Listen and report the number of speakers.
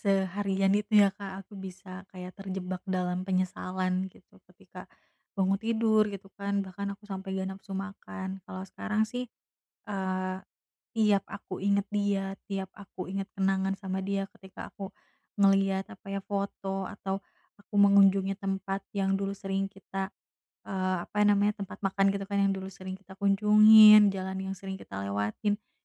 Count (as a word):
one